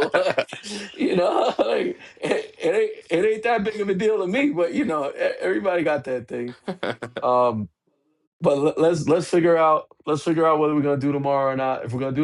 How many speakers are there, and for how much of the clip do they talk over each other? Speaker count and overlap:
1, no overlap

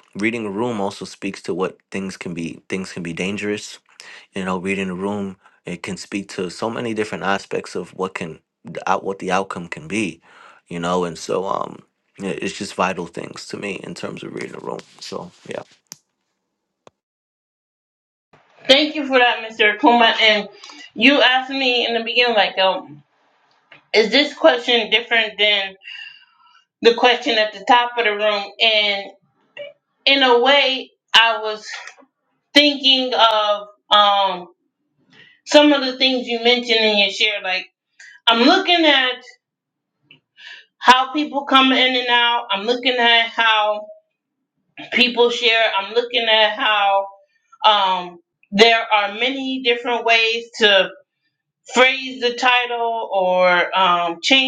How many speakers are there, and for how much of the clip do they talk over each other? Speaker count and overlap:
2, no overlap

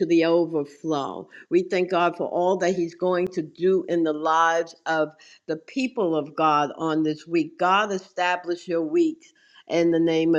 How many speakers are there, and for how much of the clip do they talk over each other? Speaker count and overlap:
1, no overlap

